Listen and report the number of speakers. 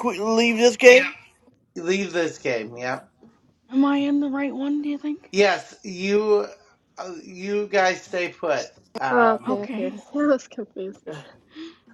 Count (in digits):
4